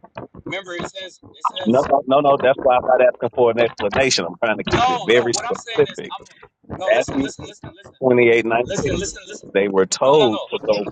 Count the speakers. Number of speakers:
2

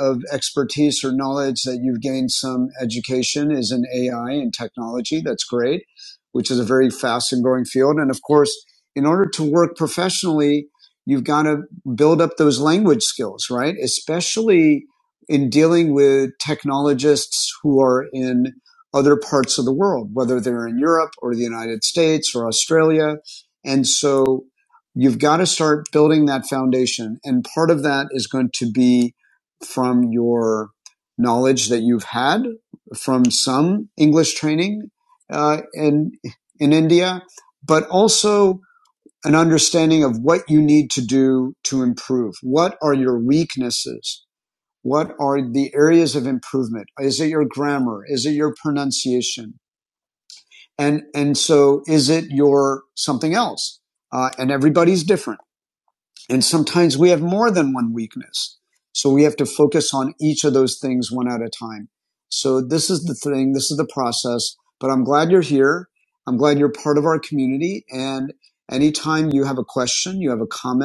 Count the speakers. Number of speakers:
1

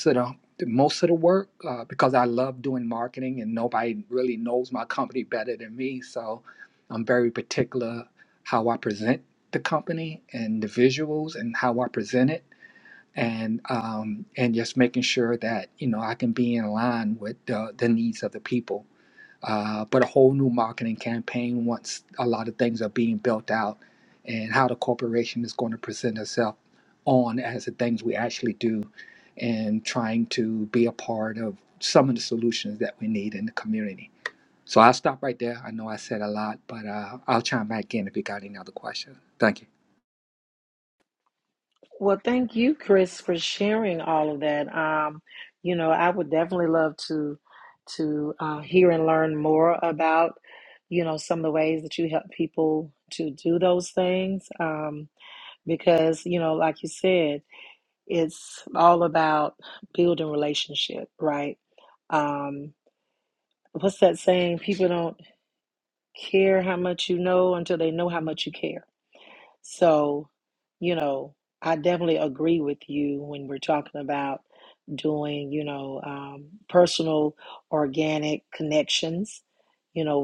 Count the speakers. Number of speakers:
2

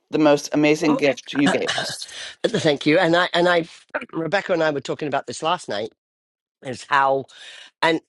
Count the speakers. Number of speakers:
2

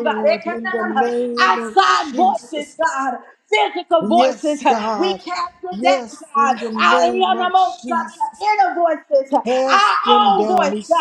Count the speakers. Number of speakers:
2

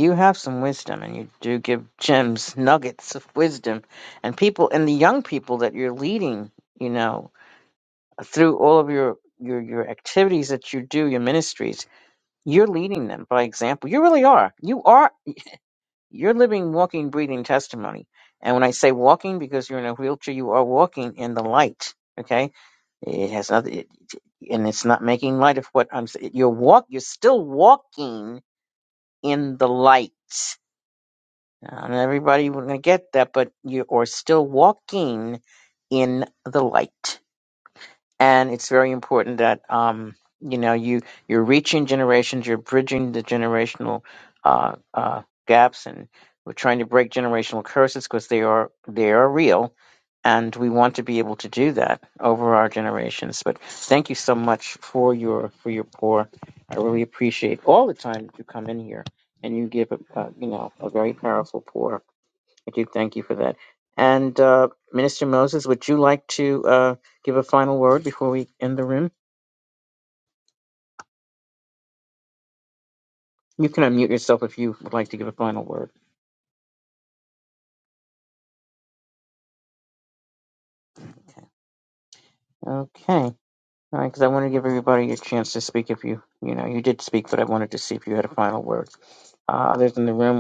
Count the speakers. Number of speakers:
1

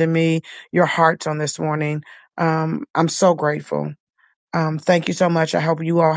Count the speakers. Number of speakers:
1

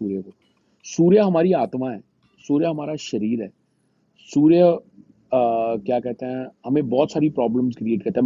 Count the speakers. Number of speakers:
1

